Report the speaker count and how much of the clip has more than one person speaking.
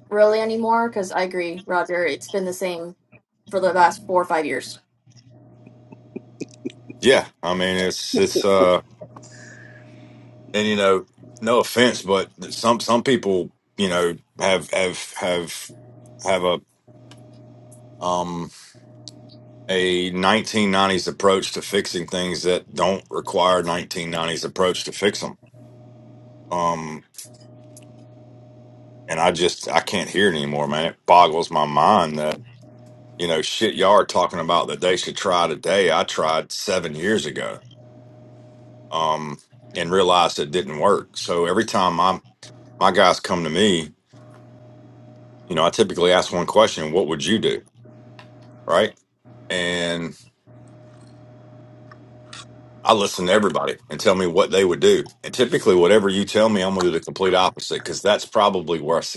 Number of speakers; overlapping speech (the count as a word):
two, no overlap